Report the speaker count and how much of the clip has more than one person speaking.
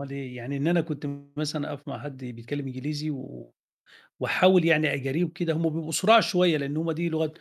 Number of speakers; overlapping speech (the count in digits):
1, no overlap